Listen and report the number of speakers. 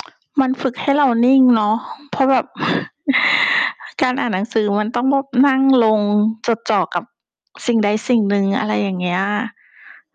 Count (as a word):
one